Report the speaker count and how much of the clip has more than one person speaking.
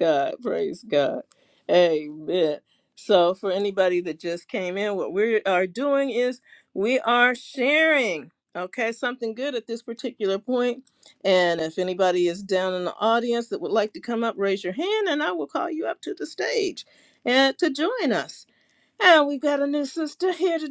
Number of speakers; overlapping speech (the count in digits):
1, no overlap